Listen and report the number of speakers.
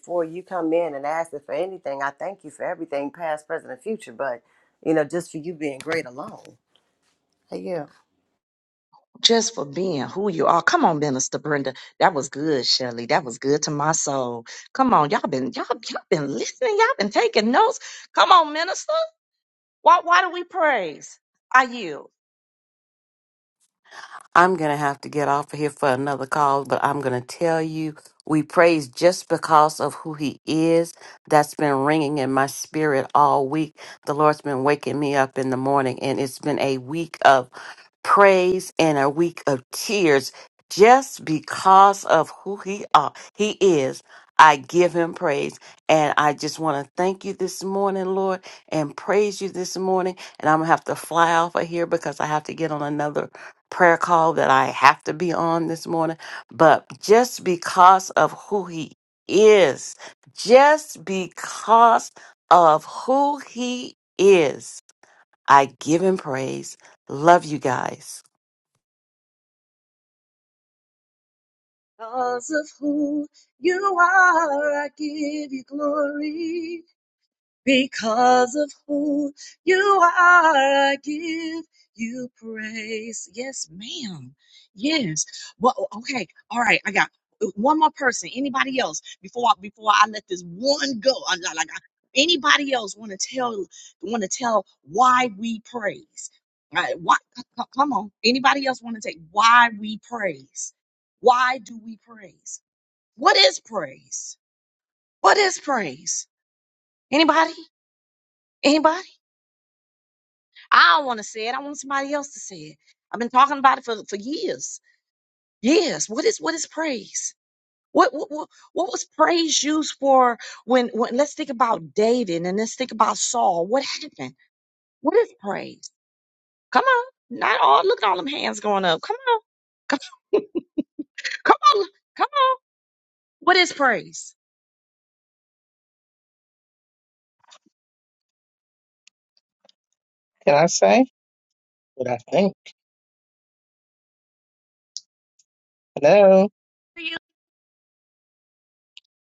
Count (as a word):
four